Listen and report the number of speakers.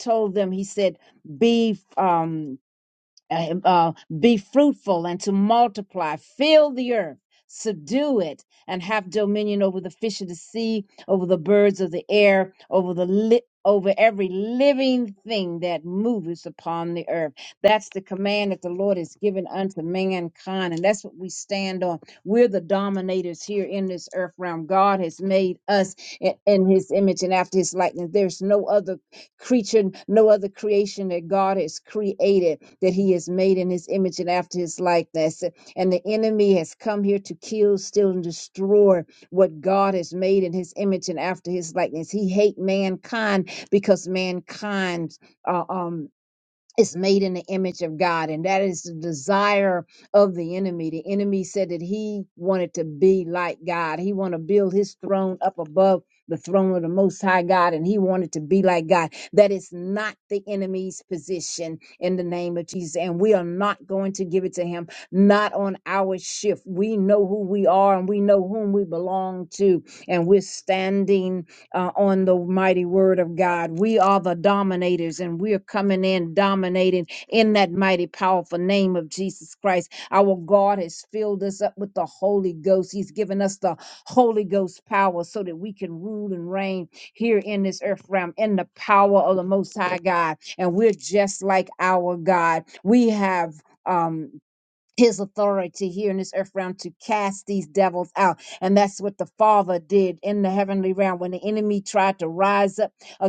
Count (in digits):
1